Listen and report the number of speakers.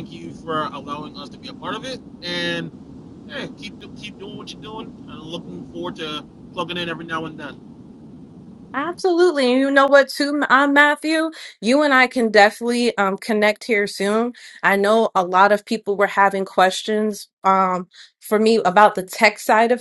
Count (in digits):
2